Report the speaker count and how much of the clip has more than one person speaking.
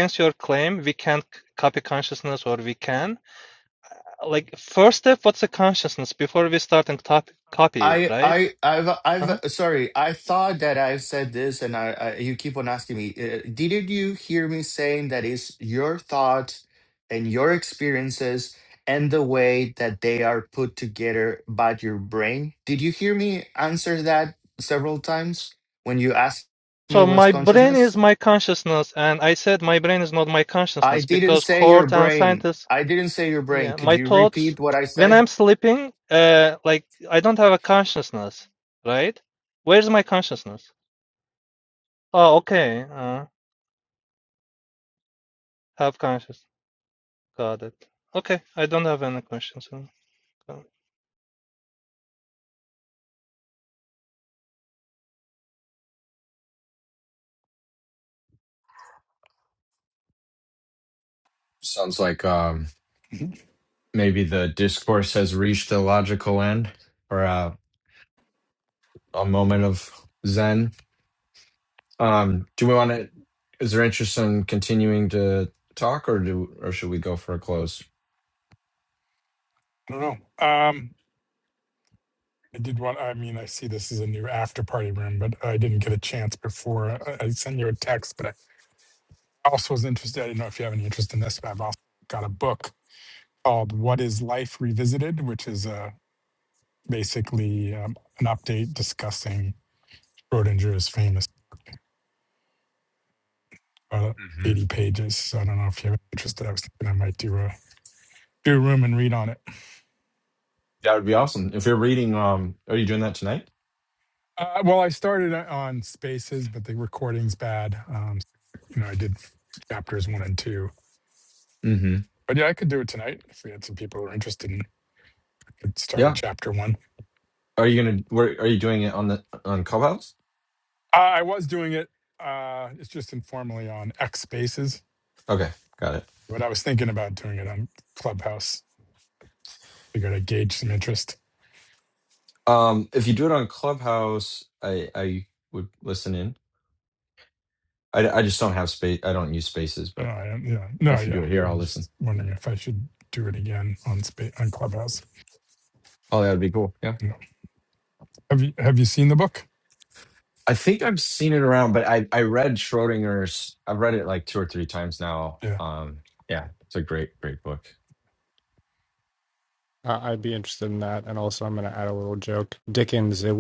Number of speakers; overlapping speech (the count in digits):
5, about 3%